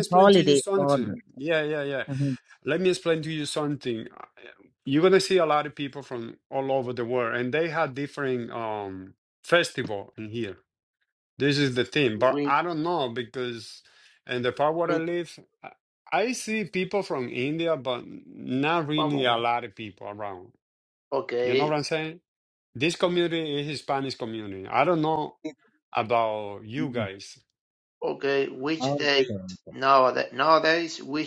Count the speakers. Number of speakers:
three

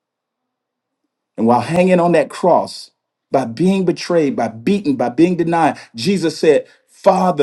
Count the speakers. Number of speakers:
one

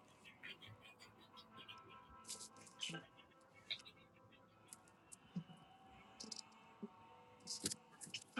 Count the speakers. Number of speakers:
zero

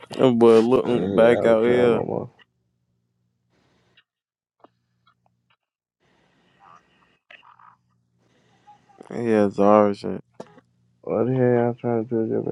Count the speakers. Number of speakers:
two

